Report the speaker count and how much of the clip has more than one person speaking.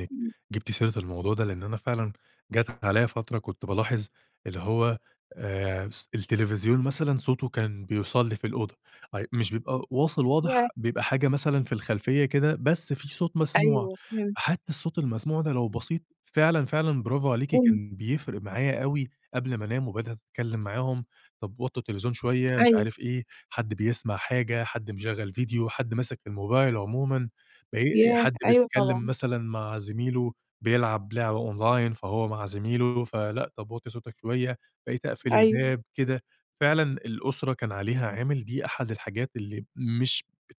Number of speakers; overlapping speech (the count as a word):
two, about 7%